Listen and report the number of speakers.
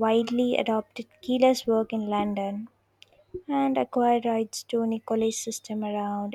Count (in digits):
1